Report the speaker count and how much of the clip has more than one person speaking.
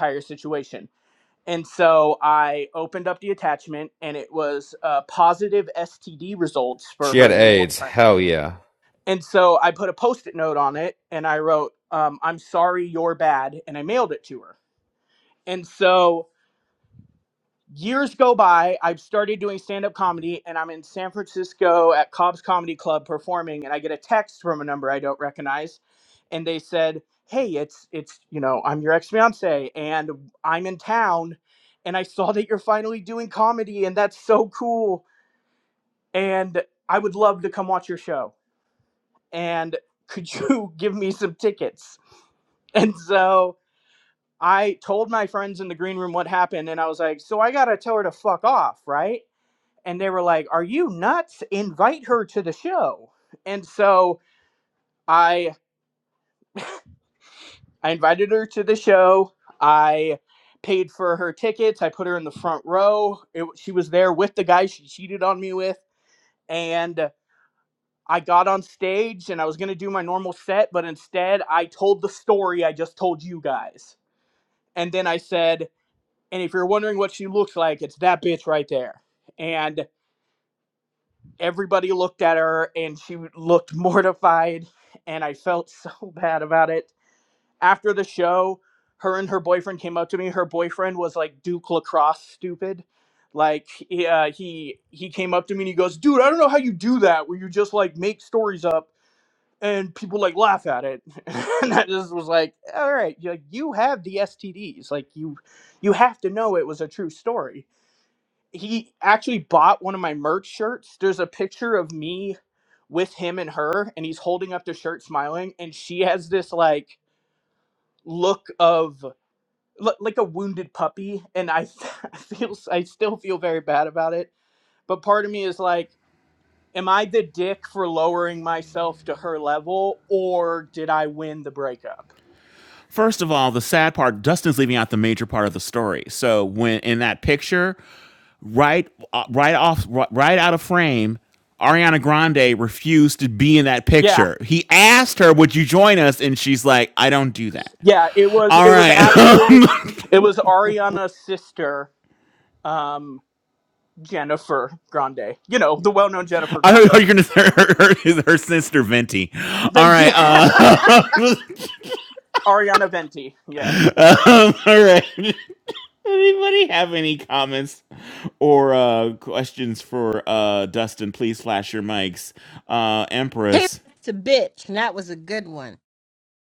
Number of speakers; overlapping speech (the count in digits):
4, about 2%